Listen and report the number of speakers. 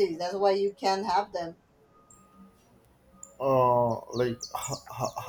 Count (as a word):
two